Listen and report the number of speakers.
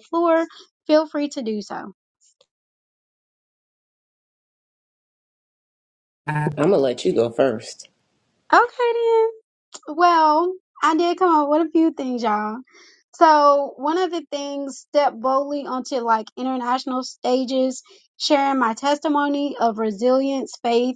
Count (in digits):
2